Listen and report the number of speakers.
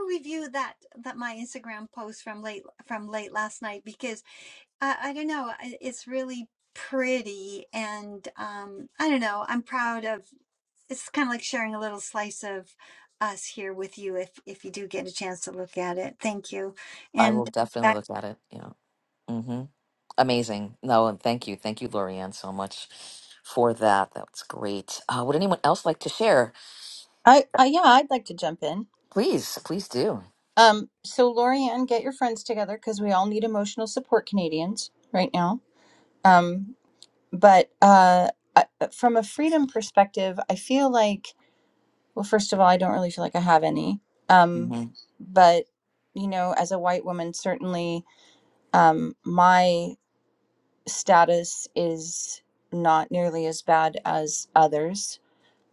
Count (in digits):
3